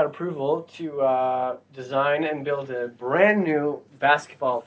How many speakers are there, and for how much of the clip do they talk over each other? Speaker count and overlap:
1, no overlap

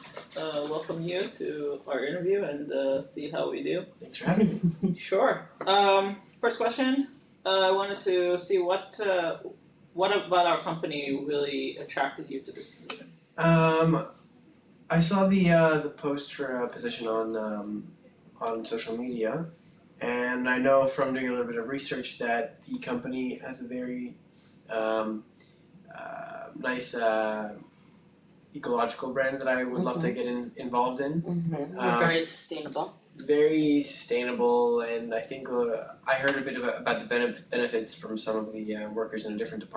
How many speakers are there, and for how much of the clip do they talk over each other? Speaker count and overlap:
3, about 2%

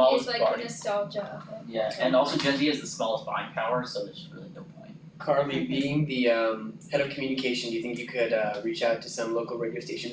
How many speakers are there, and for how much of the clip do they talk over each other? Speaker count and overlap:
3, about 2%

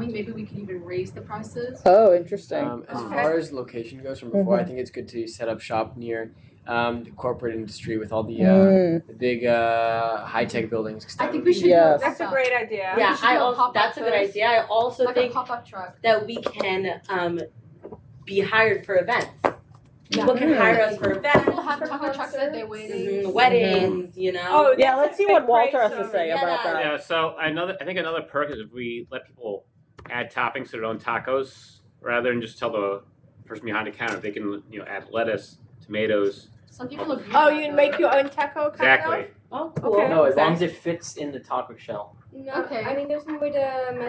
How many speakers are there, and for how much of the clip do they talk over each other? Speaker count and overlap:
8, about 32%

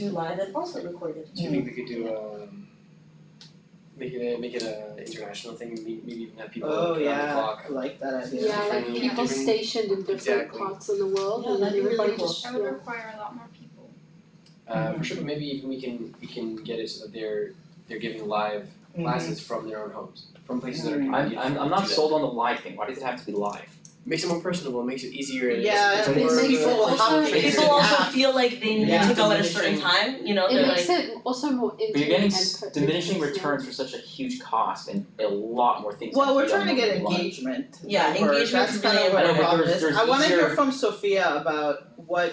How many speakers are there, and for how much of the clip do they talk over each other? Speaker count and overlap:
6, about 38%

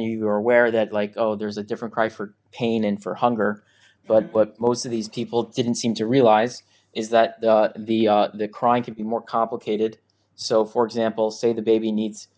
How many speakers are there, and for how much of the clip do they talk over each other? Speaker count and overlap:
1, no overlap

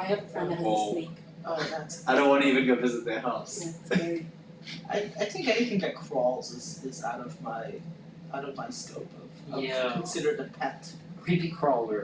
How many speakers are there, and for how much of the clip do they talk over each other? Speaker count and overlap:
4, about 17%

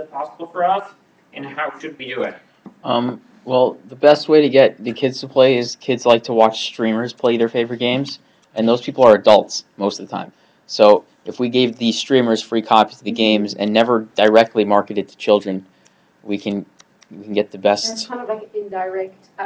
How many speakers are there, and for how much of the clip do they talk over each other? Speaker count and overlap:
3, about 5%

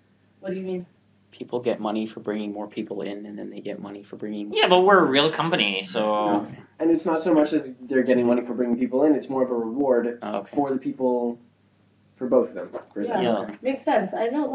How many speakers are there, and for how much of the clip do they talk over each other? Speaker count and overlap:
4, about 15%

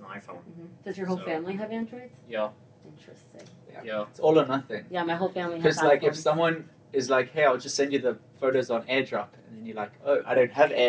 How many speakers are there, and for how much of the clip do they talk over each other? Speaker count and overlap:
3, about 10%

